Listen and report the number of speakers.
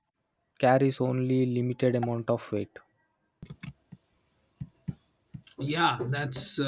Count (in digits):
2